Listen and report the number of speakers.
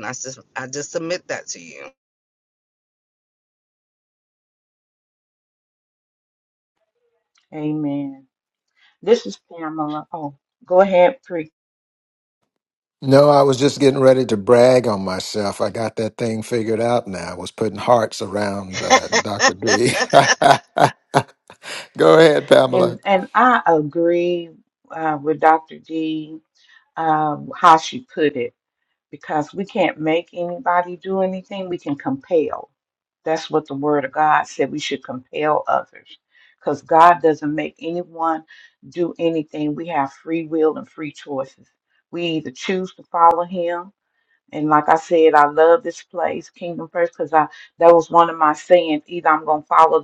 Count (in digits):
3